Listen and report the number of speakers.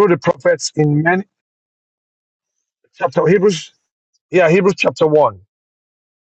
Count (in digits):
1